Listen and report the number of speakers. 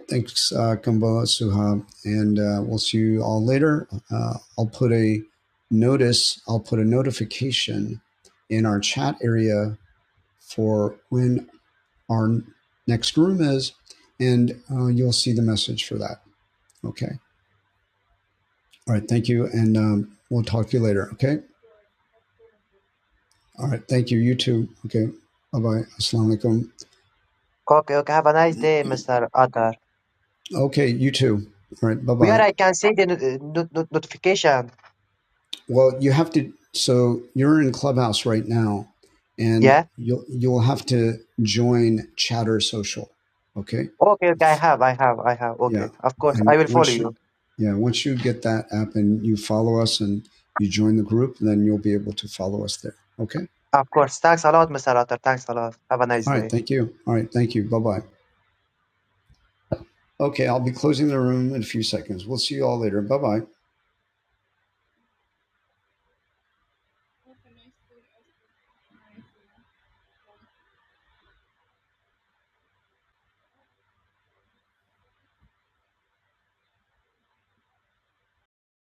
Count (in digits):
2